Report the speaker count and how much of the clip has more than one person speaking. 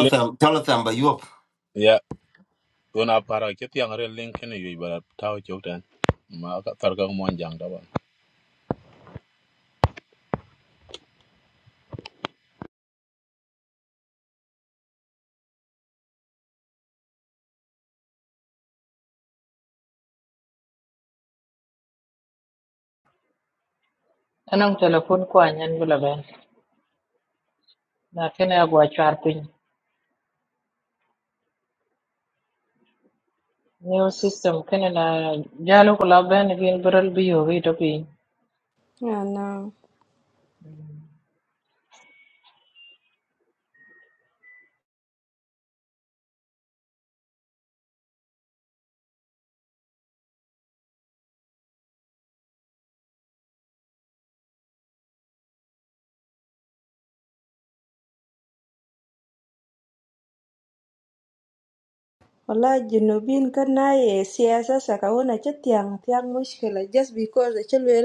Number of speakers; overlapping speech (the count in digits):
4, under 1%